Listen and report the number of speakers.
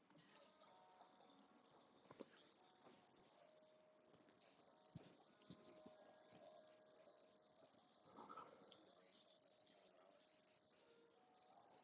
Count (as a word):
zero